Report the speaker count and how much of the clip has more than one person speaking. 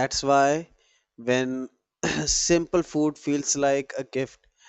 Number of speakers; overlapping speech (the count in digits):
1, no overlap